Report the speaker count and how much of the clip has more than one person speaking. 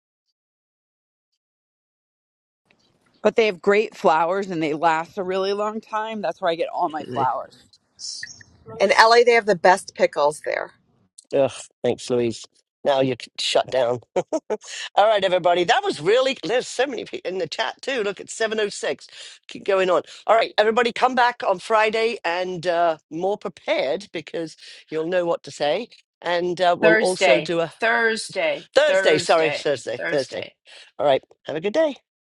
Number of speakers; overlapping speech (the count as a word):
four, about 6%